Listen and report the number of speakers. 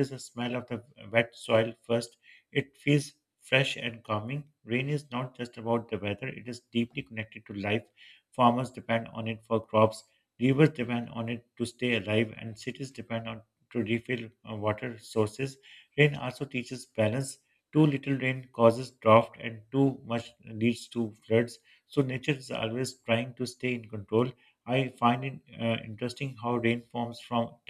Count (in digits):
1